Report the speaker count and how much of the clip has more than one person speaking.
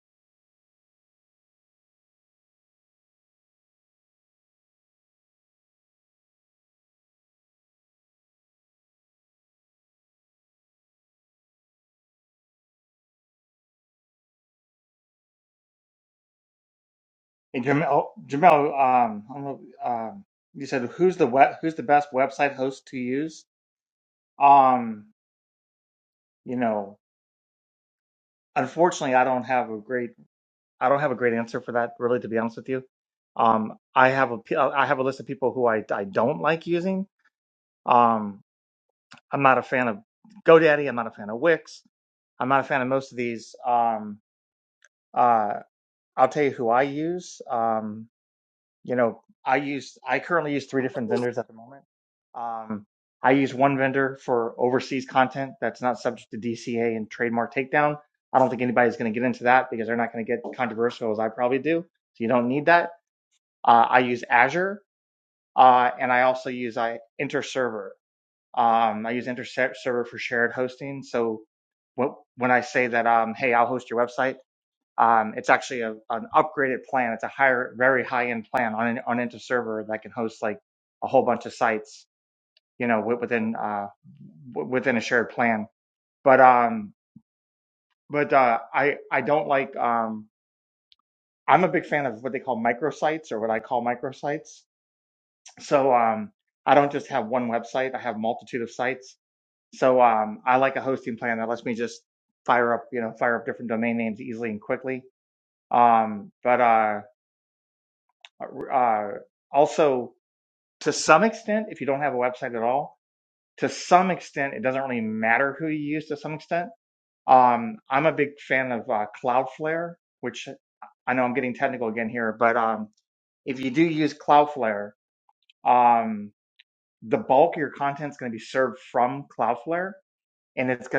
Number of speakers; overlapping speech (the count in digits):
1, no overlap